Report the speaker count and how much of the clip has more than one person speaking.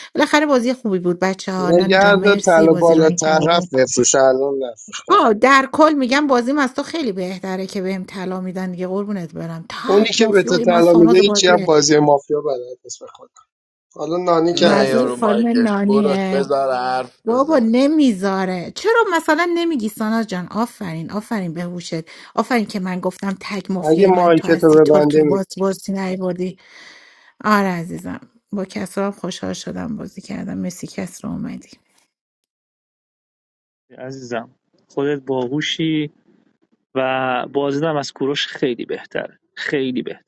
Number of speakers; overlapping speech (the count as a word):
four, about 20%